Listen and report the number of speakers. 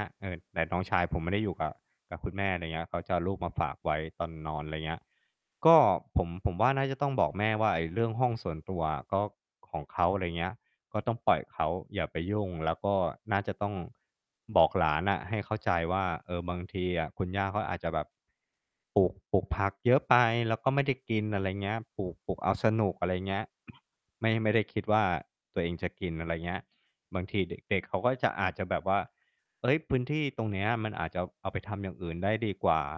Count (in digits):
1